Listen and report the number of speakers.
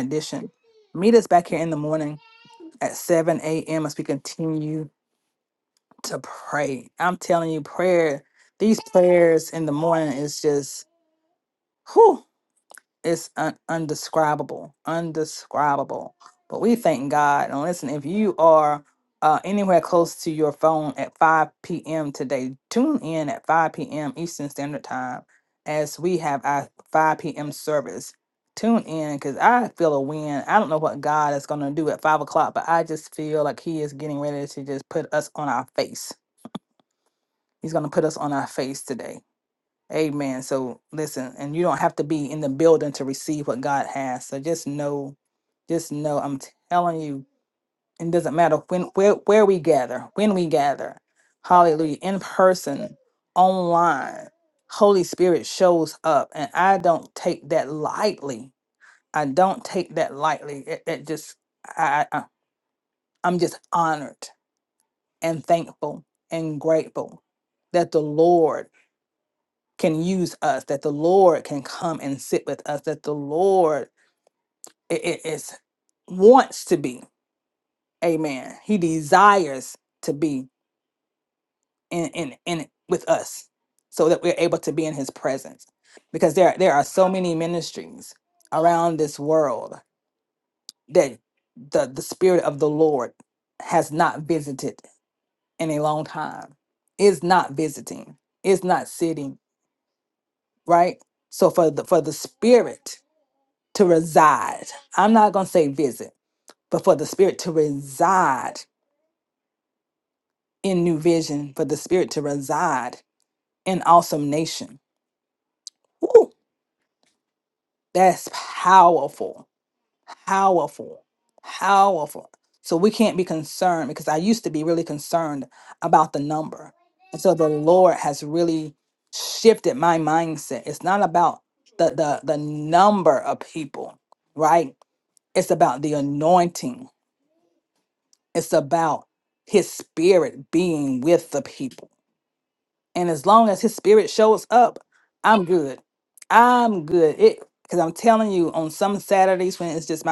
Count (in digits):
1